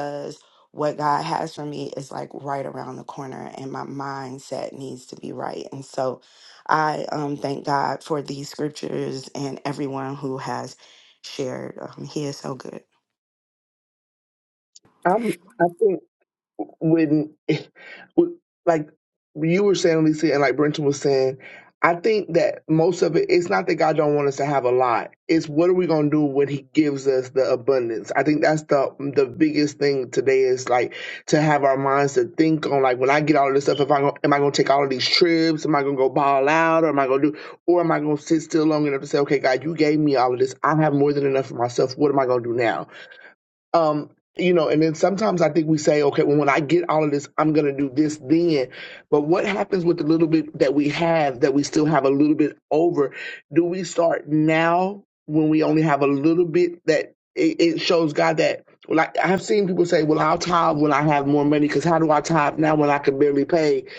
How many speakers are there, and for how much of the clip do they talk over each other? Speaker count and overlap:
2, no overlap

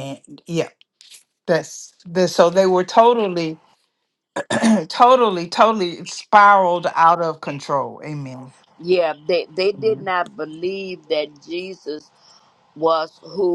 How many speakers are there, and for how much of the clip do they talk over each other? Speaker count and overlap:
2, about 2%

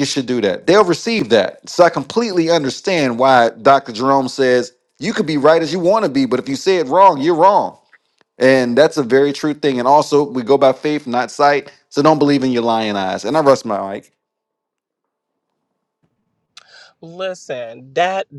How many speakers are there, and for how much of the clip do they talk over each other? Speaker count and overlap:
2, no overlap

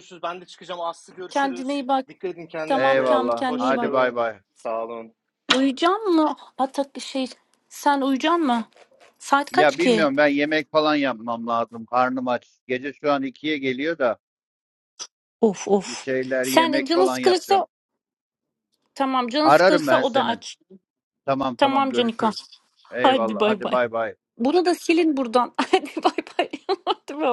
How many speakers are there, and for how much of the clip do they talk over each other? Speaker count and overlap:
3, about 23%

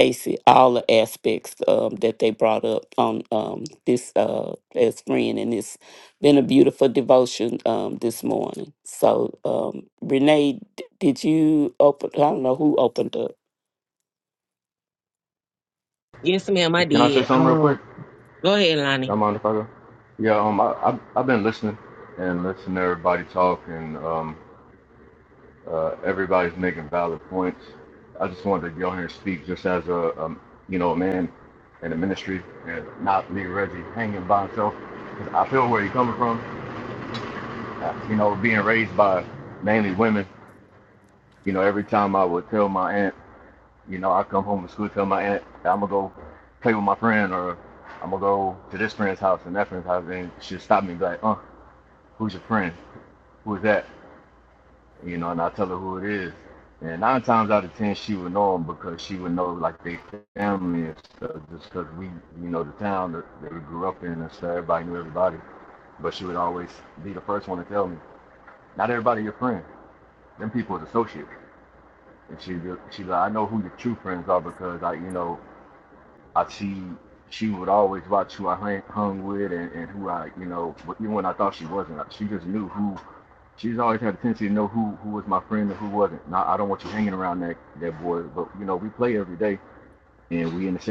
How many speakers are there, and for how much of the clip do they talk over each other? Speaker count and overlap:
3, about 1%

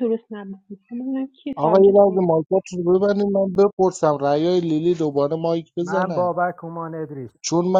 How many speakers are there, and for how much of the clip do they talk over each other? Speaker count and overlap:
3, about 14%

